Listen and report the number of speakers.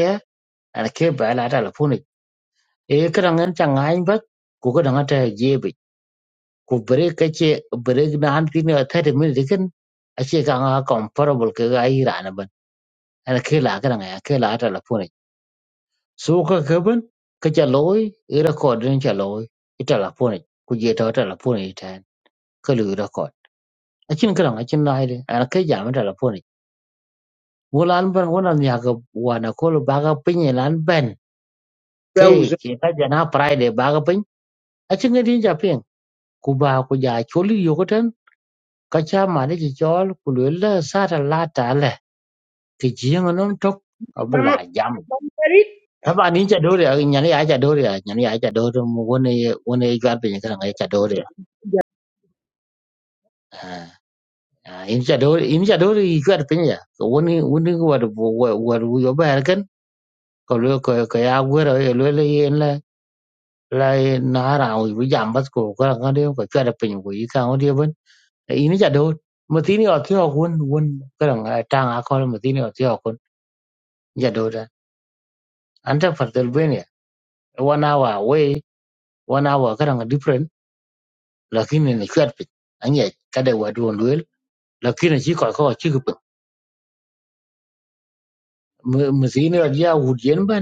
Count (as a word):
two